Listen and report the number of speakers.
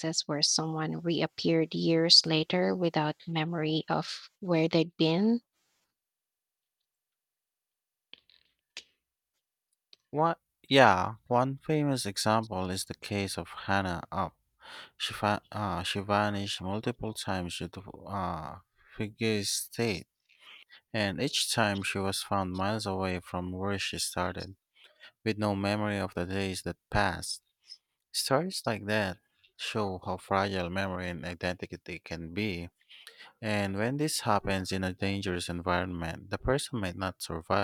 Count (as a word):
two